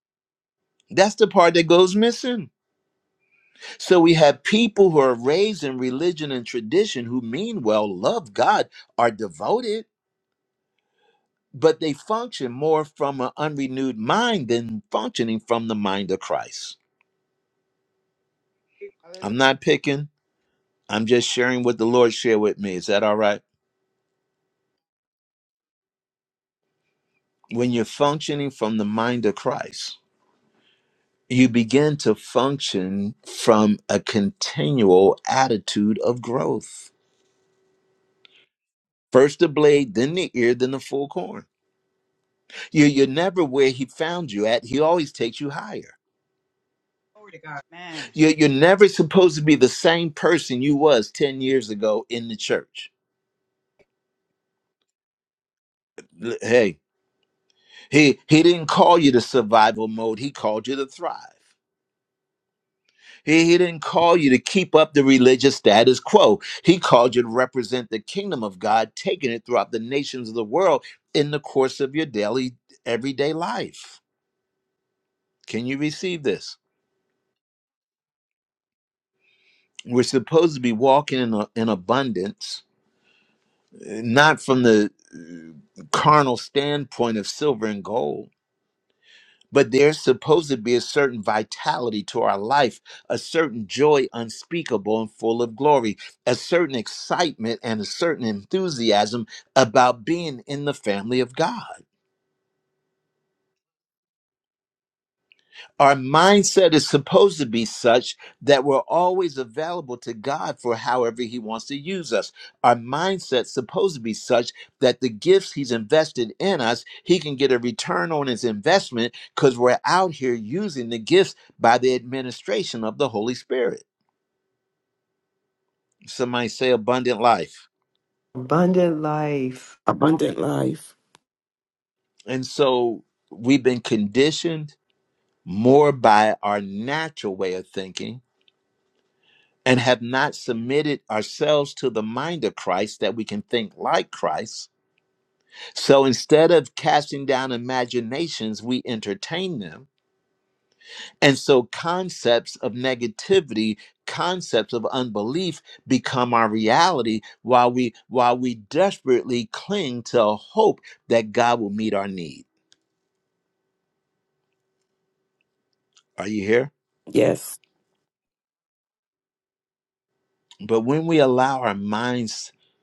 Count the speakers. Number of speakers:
4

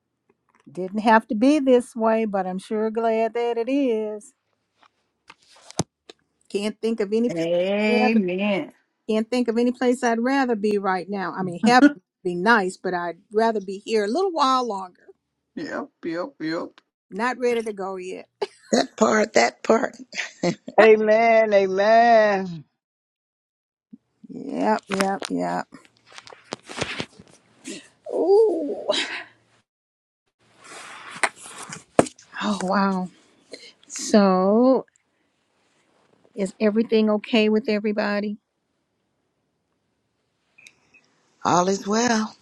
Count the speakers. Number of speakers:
4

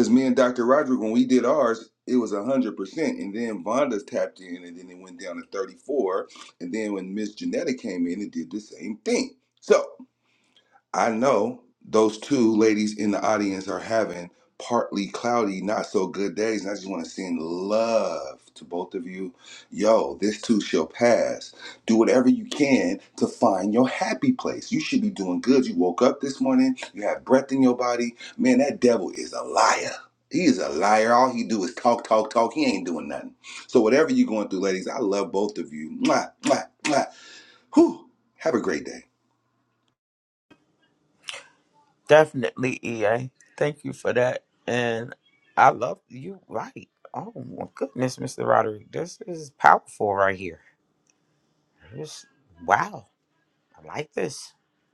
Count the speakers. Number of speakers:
2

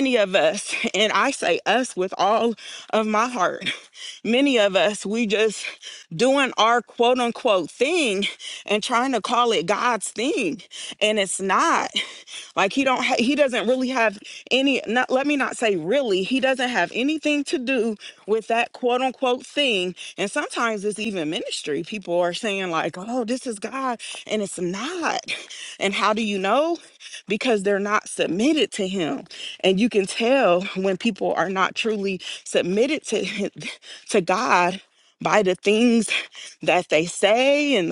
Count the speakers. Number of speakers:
1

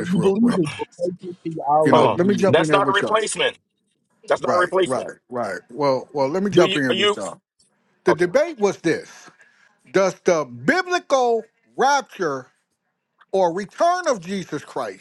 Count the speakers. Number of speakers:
3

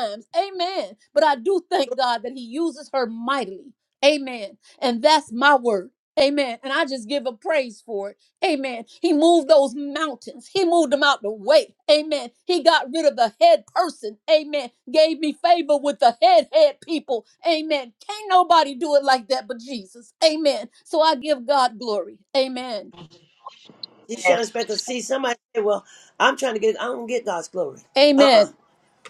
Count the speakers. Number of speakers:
2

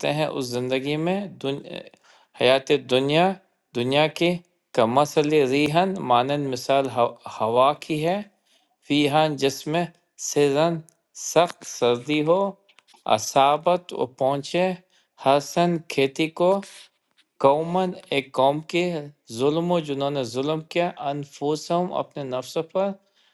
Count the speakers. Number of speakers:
1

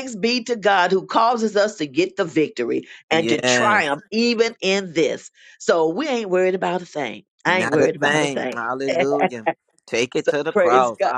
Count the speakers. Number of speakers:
2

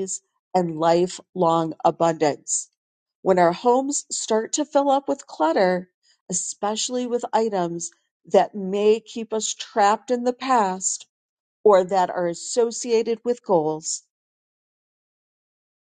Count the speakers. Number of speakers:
1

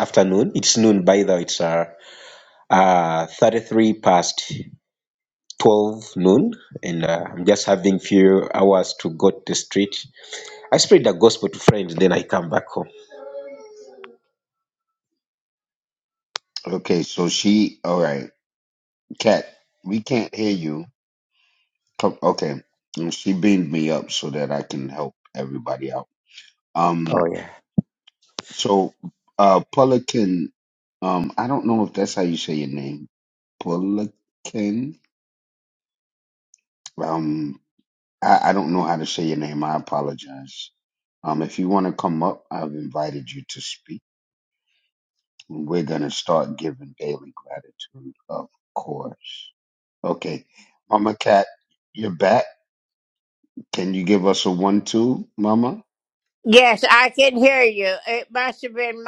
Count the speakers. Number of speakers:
3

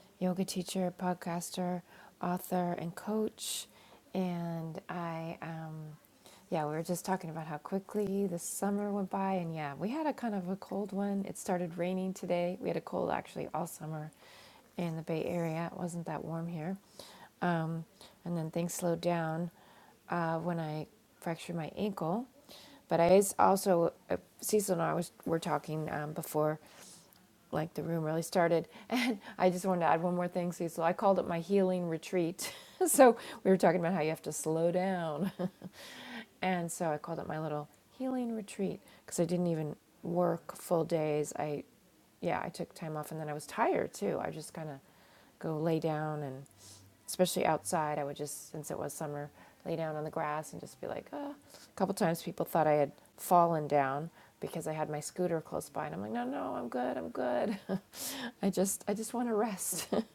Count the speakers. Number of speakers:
1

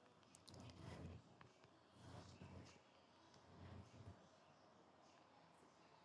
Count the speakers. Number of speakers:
0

